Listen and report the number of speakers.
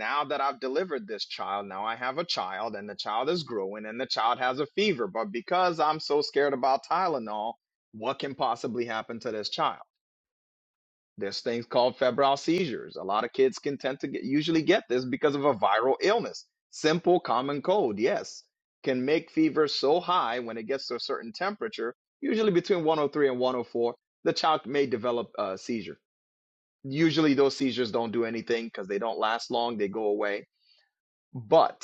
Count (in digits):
1